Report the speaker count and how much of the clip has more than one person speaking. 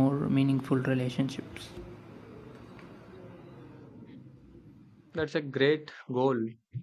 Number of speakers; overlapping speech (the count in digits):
2, no overlap